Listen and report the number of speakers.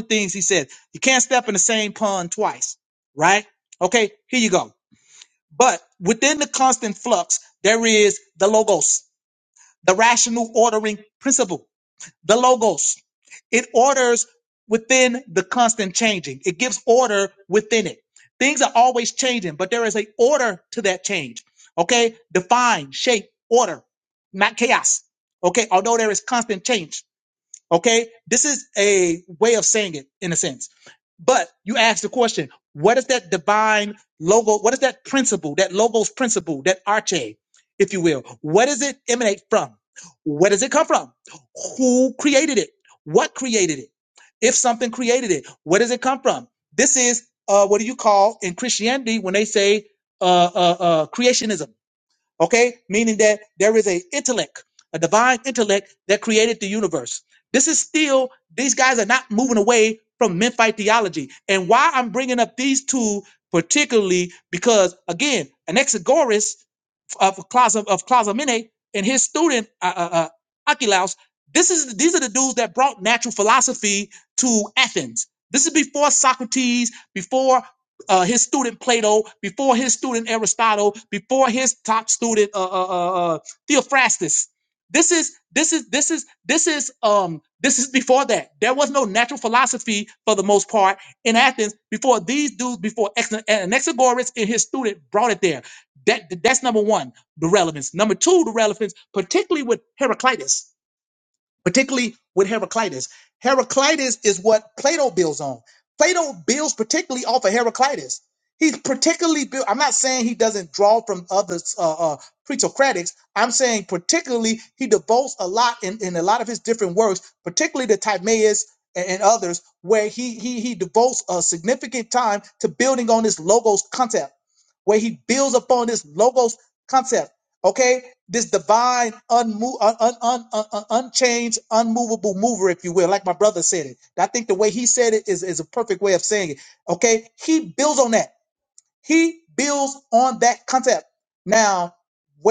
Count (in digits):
1